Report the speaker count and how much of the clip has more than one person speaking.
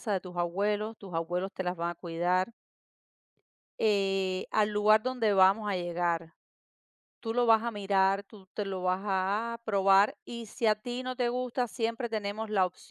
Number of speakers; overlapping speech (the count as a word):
one, no overlap